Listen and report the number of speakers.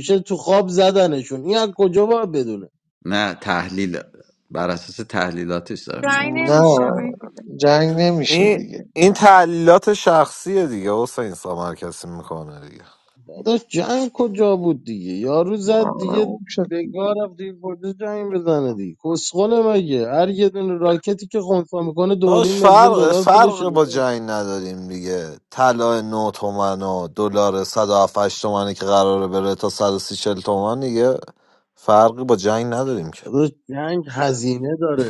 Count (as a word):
five